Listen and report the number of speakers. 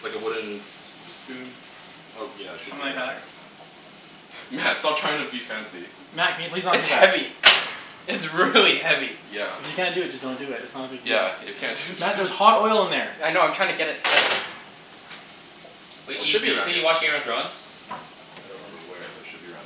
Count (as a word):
four